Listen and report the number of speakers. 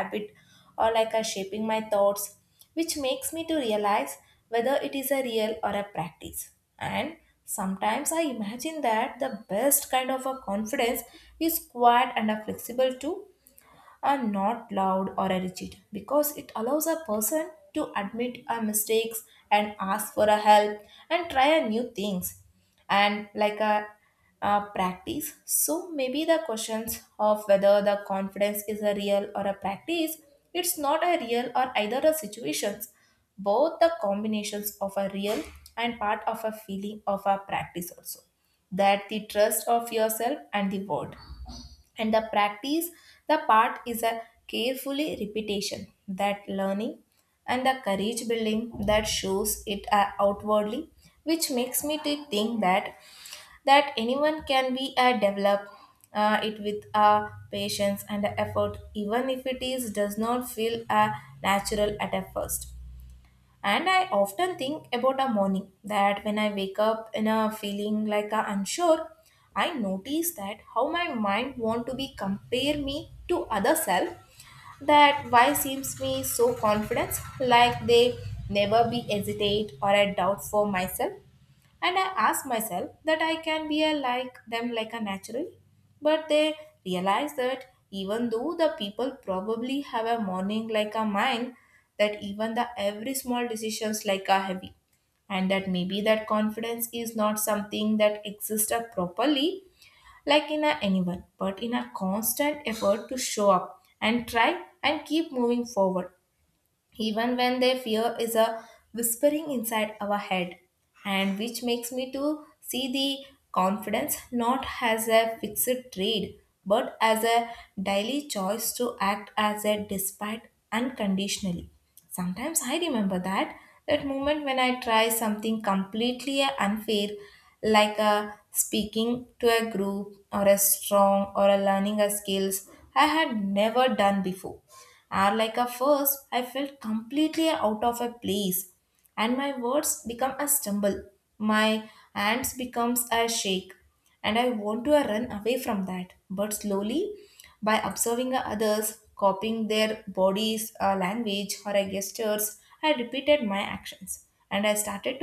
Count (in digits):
1